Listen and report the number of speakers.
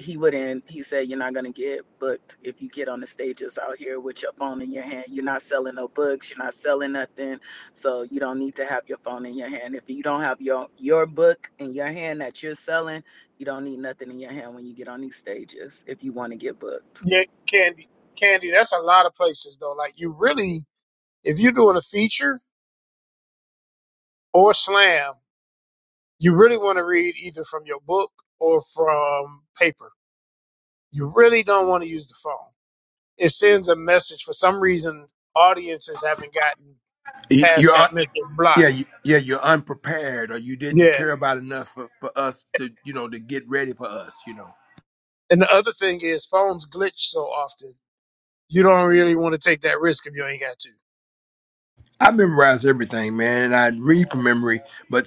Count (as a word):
three